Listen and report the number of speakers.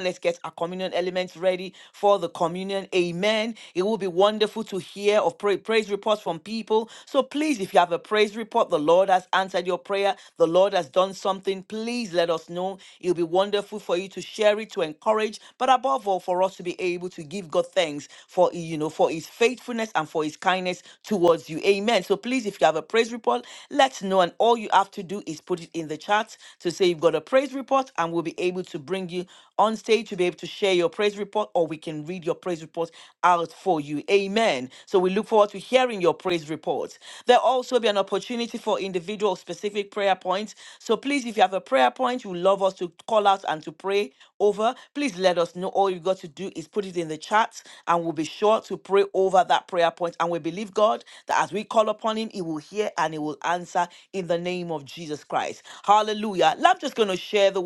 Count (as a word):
one